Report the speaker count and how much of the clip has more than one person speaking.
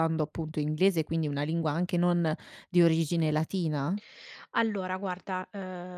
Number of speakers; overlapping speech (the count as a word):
two, no overlap